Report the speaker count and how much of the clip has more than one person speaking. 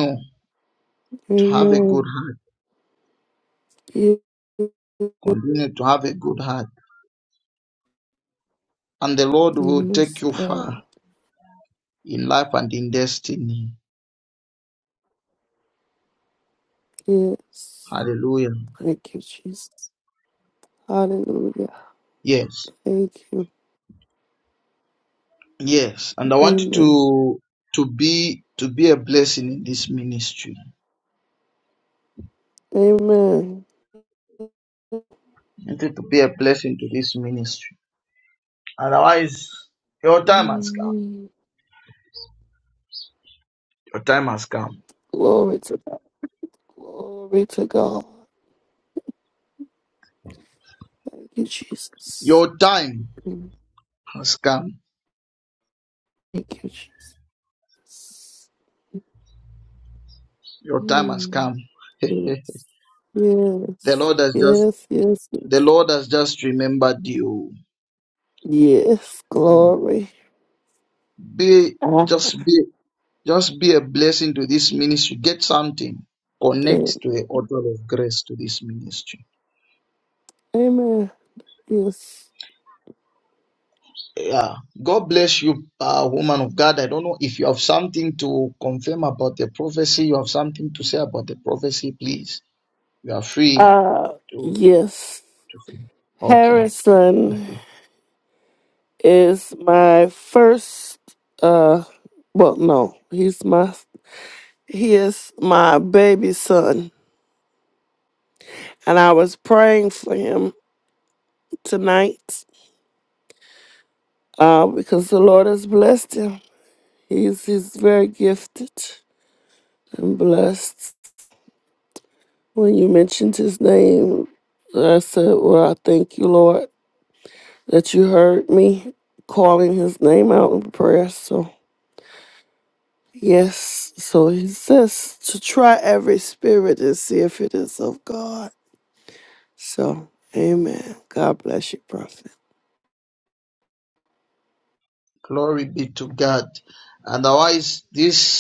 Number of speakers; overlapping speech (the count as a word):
two, about 3%